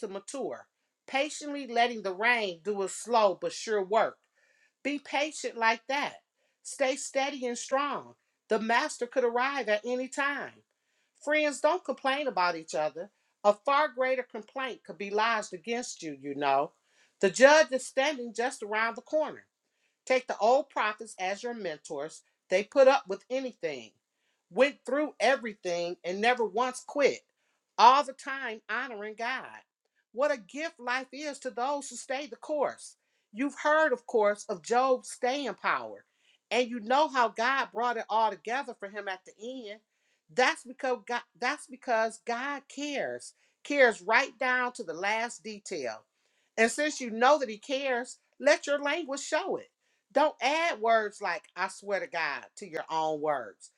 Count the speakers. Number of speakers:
1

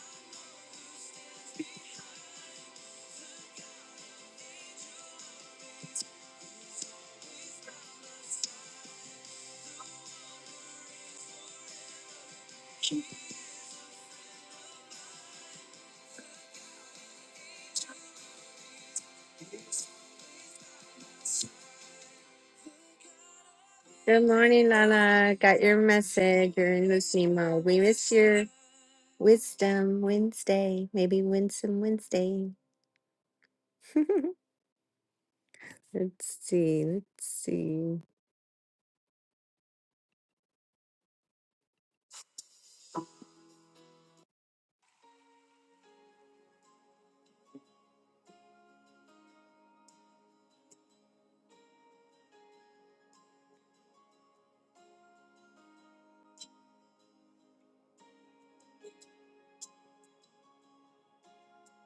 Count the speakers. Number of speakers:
1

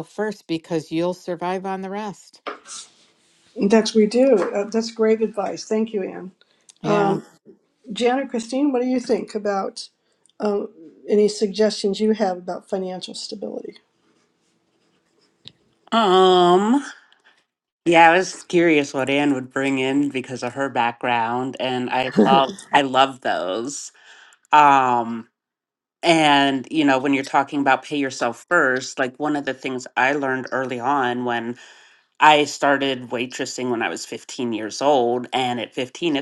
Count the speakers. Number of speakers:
3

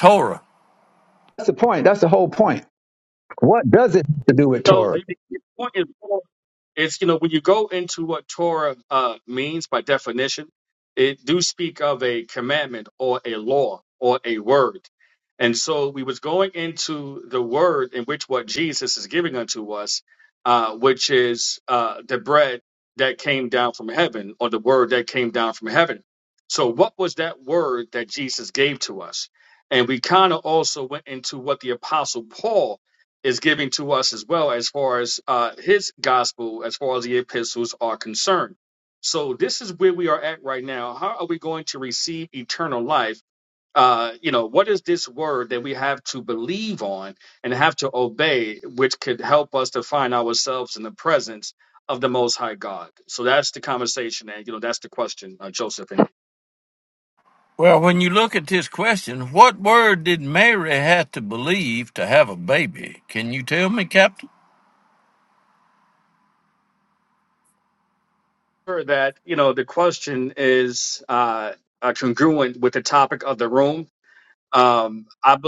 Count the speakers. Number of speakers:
3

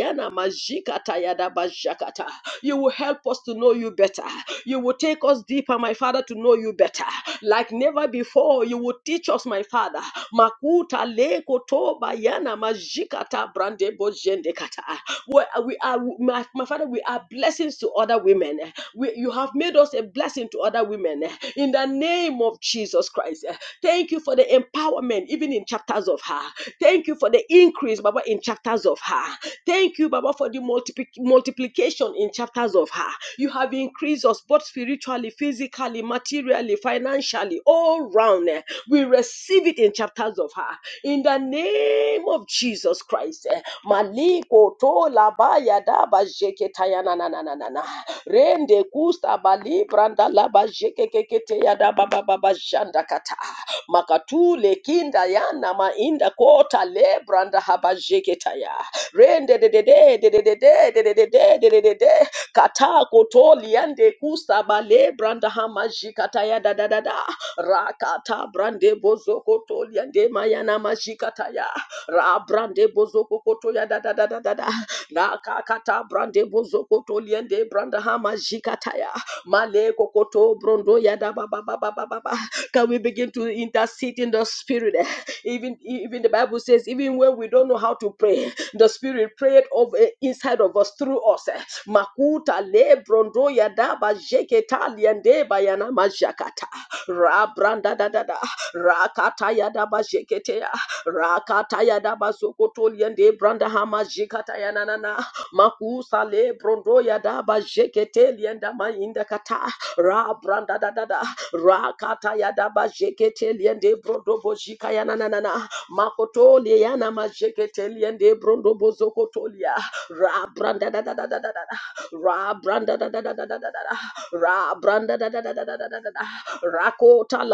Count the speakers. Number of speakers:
1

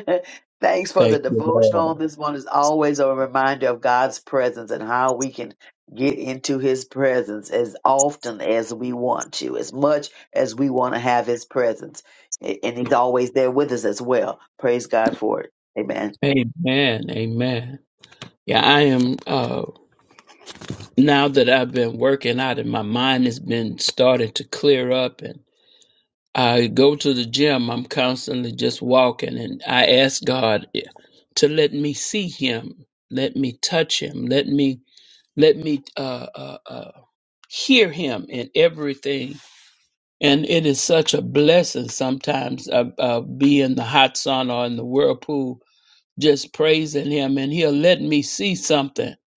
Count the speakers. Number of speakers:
2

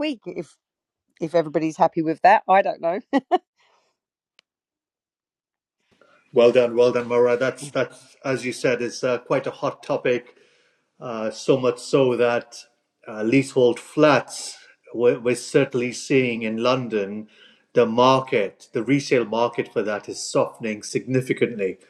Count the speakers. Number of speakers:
2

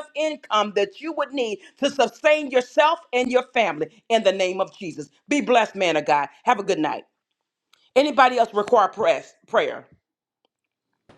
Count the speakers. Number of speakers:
1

